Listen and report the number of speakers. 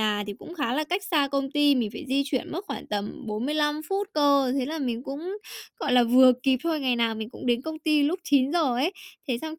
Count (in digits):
1